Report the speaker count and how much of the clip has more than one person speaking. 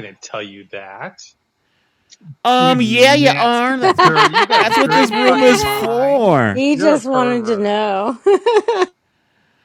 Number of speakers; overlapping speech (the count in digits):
3, about 36%